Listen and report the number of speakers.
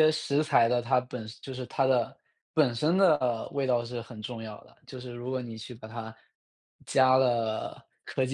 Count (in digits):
1